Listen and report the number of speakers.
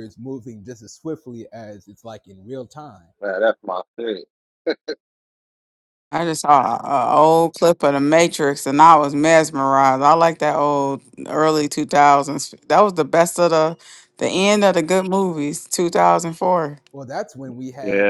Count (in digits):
3